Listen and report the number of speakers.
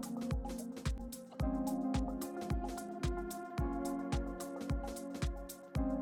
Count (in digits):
0